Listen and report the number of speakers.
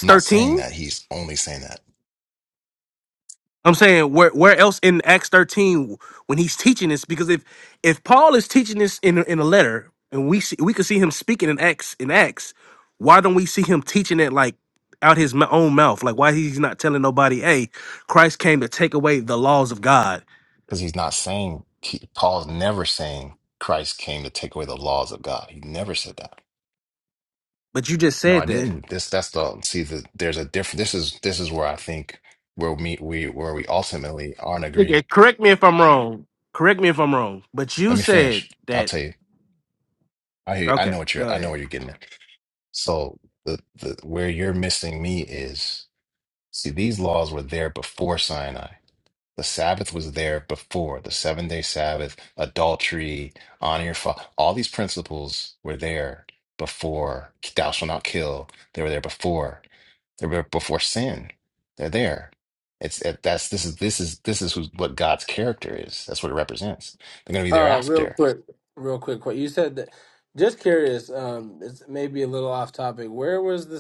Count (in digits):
3